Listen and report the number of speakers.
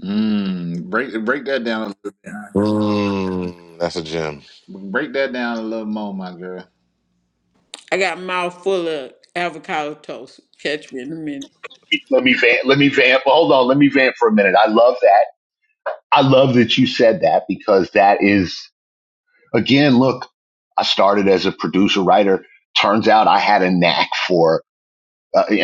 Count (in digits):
4